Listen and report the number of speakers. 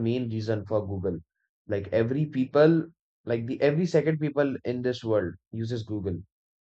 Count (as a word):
one